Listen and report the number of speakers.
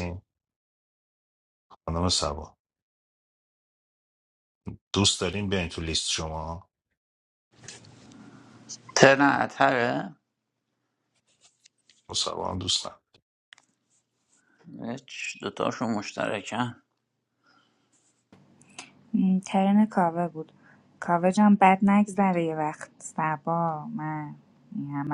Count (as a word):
three